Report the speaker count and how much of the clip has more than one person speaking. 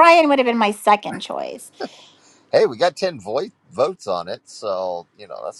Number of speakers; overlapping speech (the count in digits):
2, no overlap